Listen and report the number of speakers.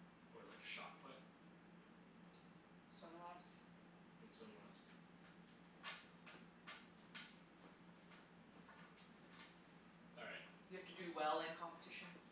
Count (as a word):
two